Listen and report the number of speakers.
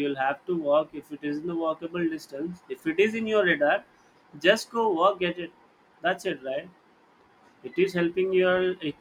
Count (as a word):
one